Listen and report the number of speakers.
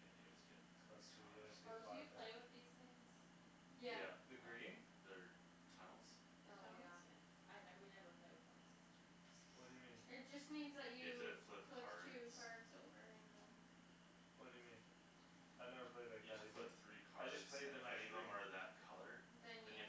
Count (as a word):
four